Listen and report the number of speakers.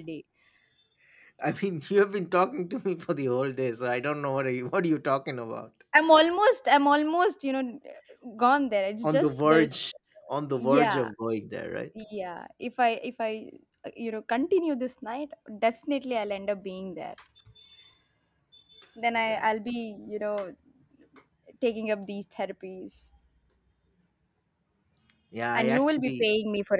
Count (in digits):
2